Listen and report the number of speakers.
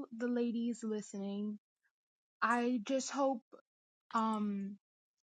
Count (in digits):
1